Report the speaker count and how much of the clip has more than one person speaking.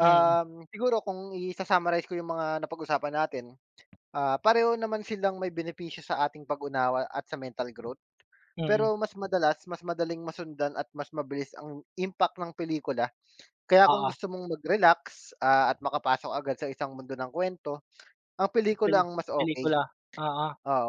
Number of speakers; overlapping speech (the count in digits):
2, about 6%